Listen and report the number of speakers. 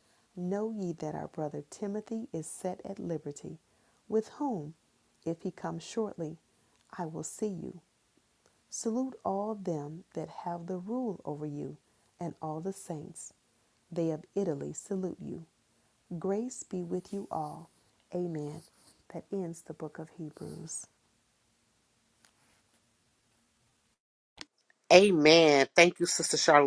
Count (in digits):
2